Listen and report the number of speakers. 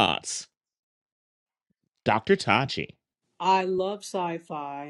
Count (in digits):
2